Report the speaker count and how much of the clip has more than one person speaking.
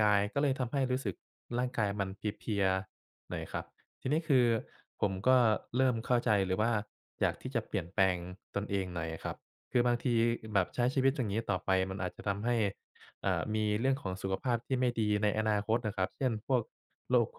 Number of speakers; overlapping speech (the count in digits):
1, no overlap